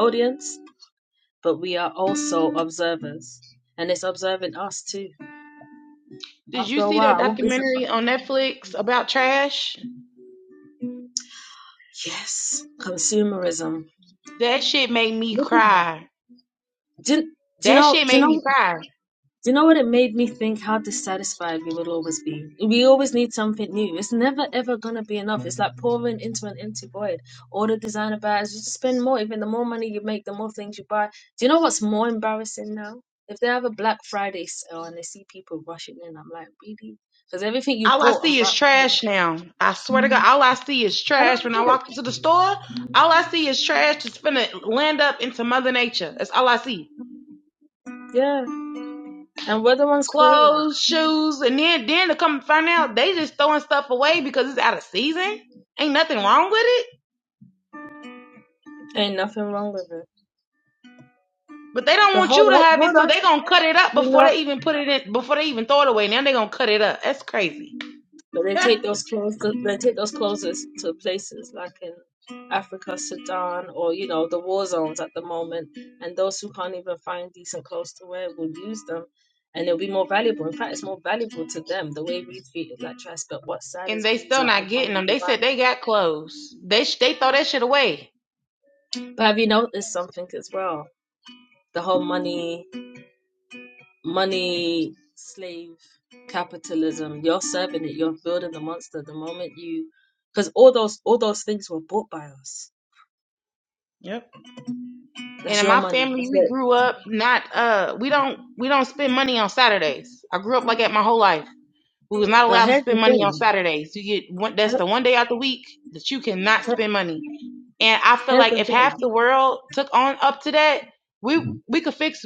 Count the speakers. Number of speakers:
2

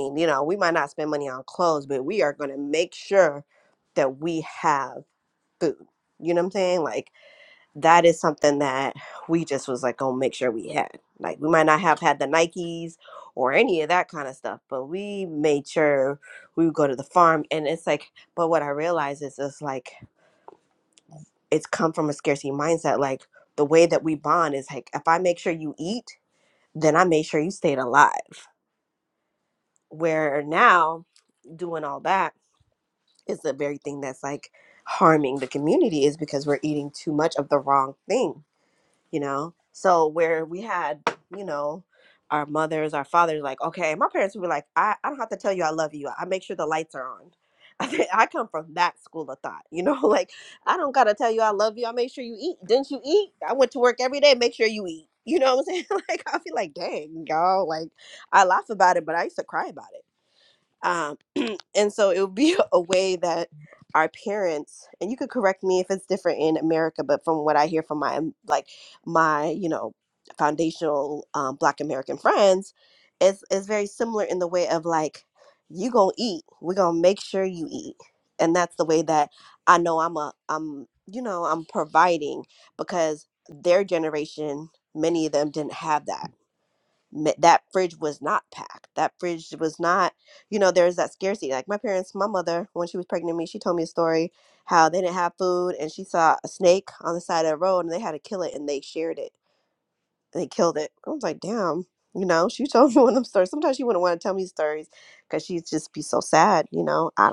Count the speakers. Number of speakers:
1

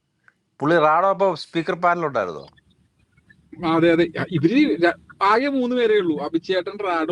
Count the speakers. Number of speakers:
2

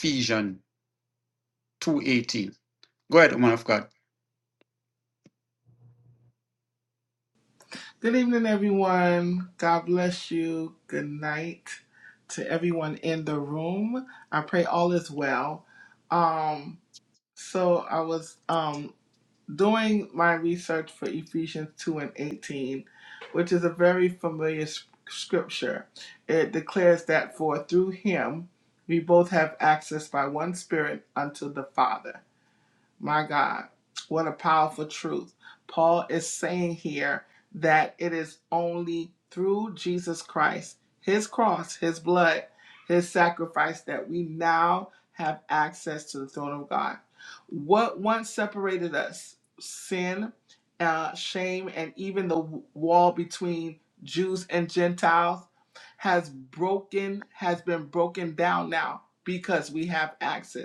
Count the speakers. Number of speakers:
2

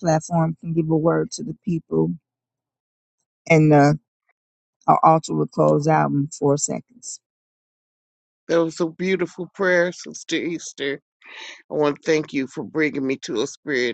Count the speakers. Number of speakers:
2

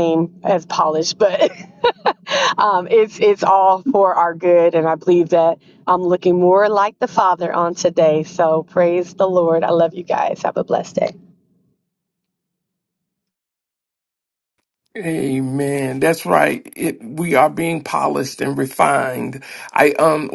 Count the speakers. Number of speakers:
2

